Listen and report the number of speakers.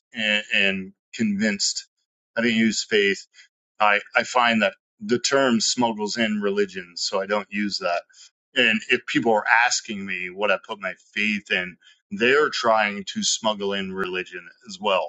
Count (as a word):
one